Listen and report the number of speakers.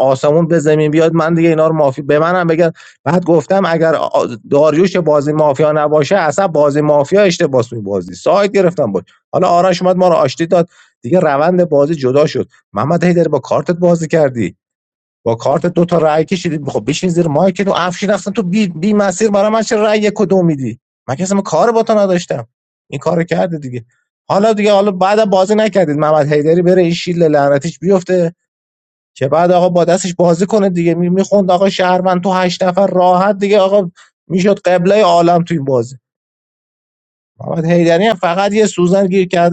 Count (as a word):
one